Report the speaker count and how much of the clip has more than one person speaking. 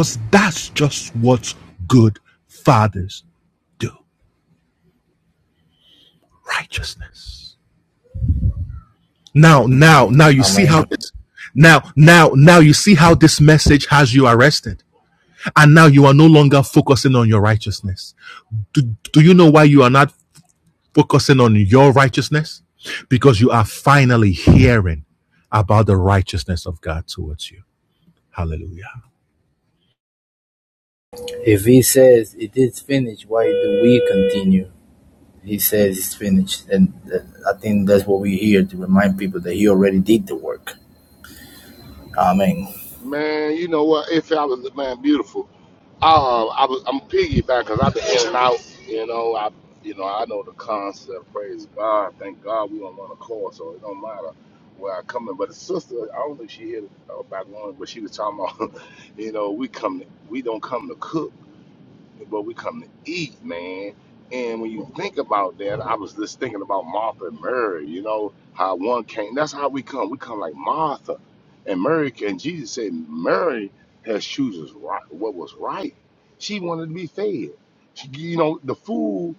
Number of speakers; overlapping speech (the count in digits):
3, about 1%